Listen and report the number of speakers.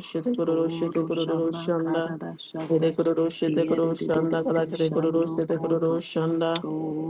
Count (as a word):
two